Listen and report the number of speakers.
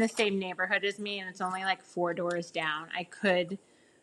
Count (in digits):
1